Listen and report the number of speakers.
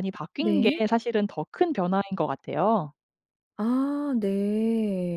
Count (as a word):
two